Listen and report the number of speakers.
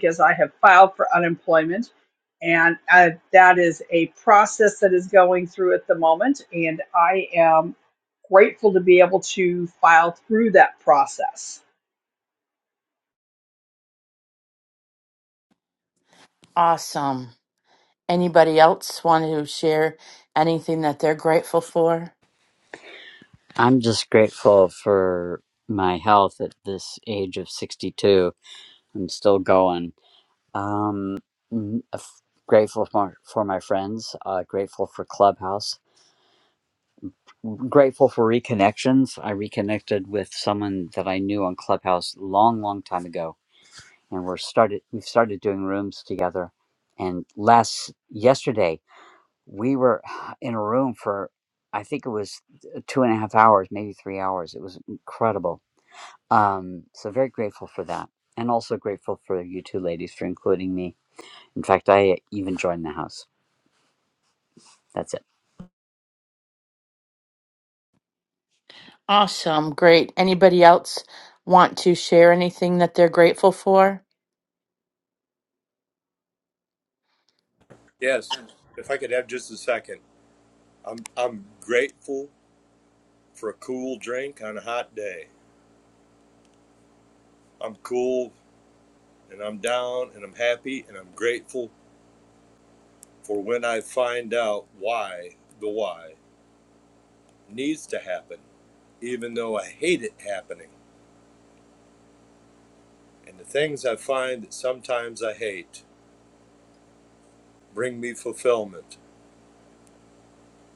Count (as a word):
four